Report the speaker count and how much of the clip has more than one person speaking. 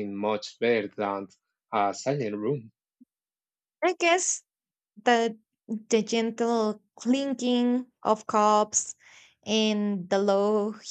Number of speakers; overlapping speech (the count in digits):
2, no overlap